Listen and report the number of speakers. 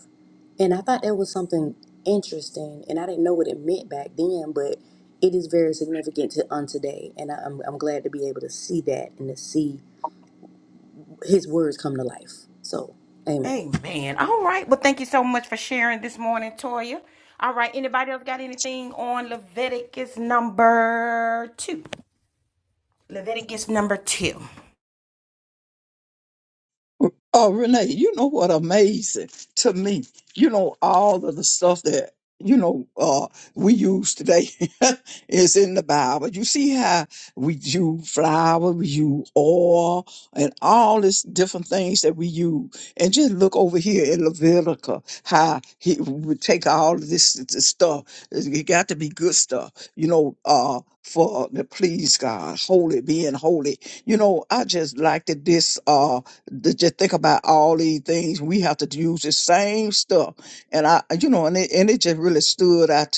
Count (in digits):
3